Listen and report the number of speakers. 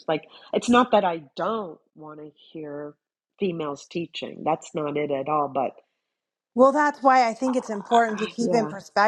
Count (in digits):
2